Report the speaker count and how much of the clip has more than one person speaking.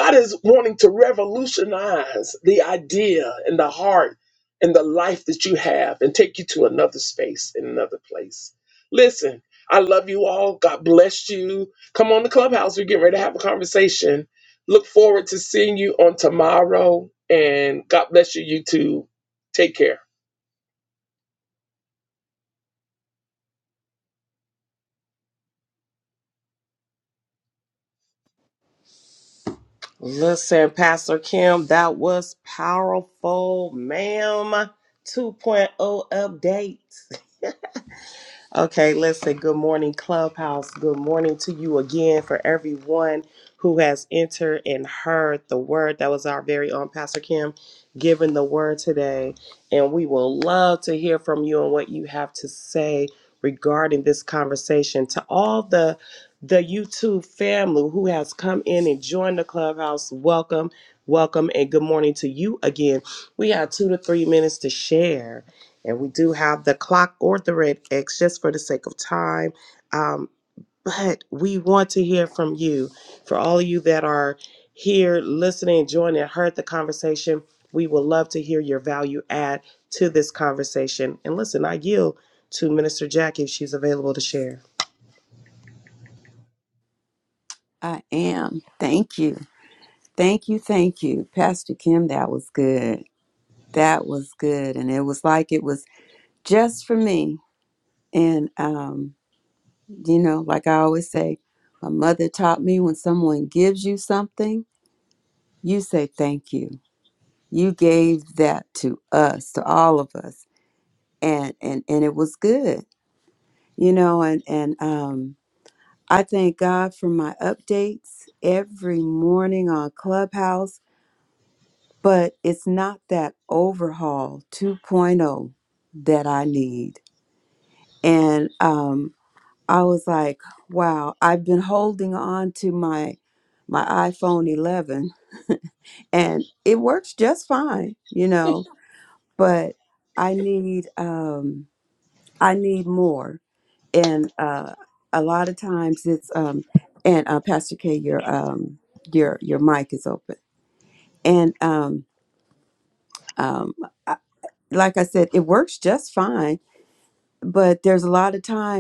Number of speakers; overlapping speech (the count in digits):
3, no overlap